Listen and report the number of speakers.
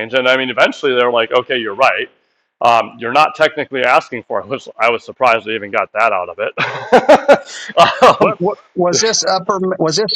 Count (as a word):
two